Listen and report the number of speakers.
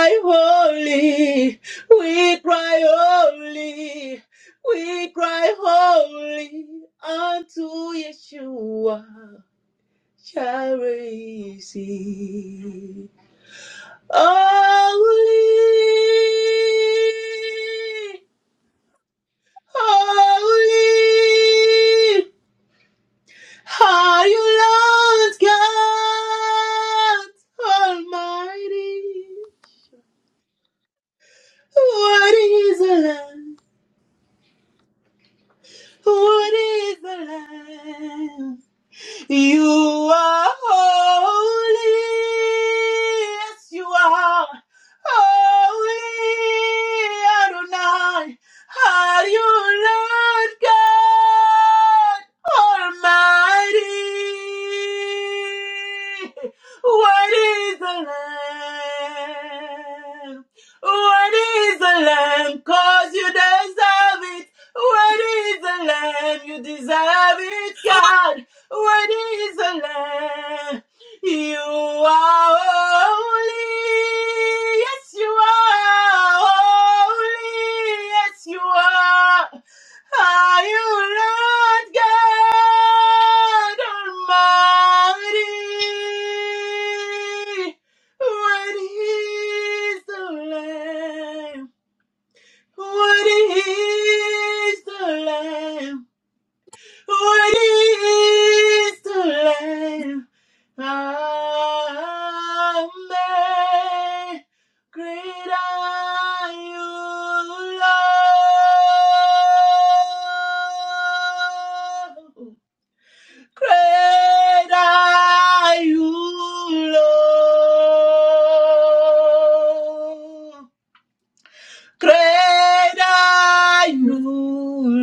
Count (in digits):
1